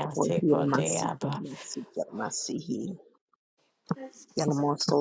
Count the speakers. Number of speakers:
2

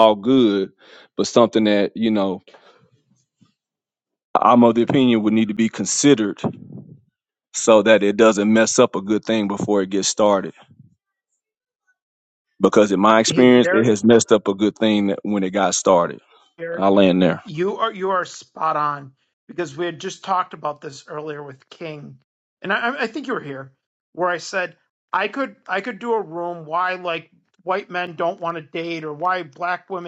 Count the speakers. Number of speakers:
2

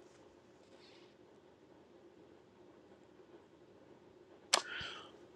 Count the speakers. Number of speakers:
0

